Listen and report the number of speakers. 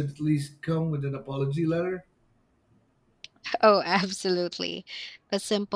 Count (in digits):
2